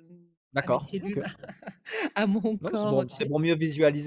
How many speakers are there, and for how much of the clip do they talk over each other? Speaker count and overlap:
two, about 33%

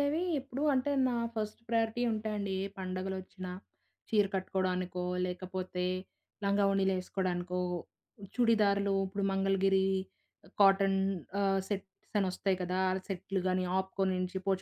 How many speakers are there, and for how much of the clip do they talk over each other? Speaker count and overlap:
one, no overlap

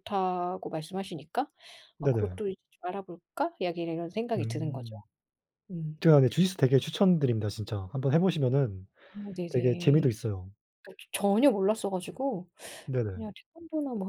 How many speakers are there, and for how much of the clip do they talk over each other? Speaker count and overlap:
two, about 7%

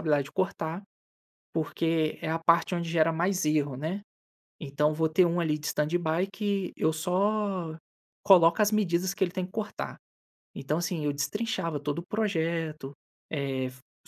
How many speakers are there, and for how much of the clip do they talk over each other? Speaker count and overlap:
one, no overlap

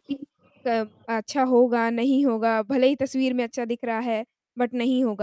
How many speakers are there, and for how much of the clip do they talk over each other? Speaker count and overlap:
one, no overlap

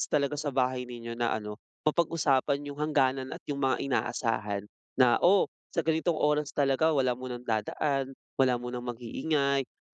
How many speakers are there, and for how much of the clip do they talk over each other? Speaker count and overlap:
one, no overlap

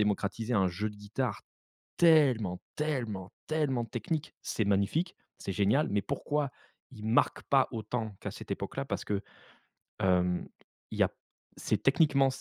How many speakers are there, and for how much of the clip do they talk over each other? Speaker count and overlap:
one, no overlap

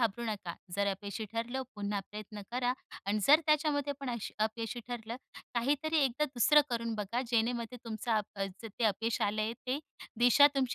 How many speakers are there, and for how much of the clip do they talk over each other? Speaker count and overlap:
one, no overlap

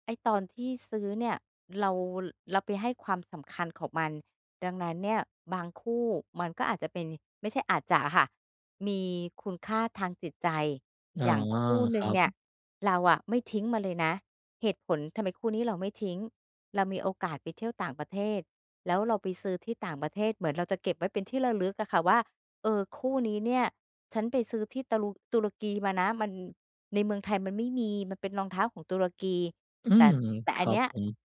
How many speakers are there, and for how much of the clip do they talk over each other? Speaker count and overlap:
two, about 3%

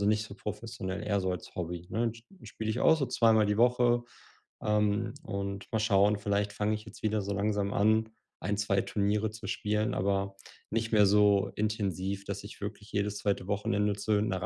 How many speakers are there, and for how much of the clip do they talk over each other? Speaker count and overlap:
one, no overlap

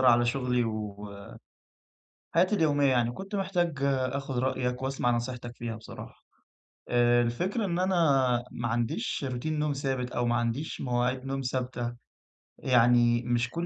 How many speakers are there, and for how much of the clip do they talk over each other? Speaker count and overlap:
one, no overlap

